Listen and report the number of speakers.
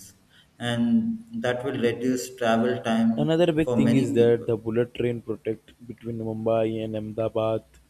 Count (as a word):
two